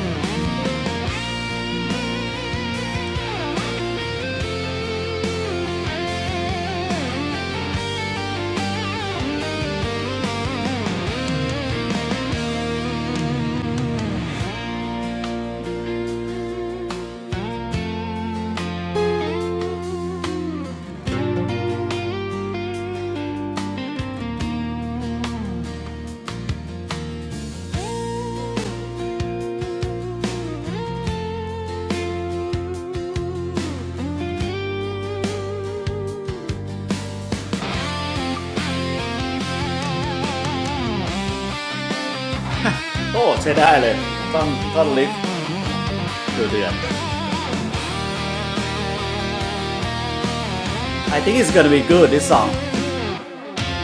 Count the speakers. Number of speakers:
1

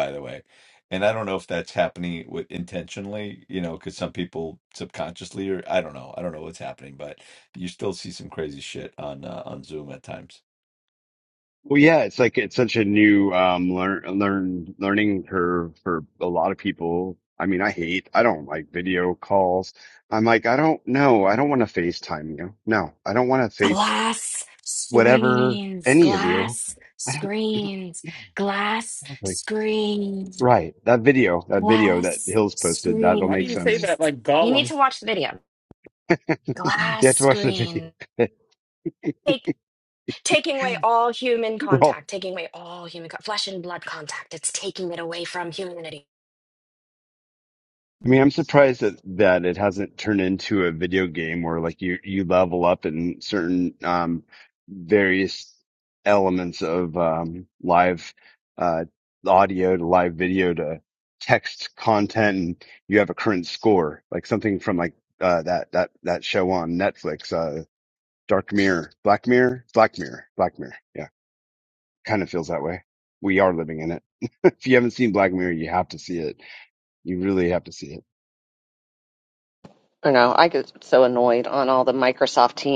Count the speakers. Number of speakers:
5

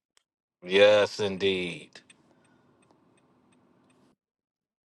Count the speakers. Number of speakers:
1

